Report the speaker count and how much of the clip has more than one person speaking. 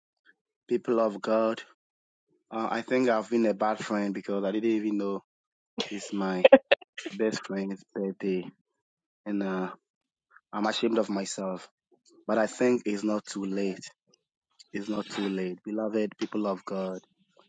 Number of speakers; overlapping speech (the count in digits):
1, no overlap